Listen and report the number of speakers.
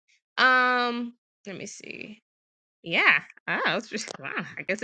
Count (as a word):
one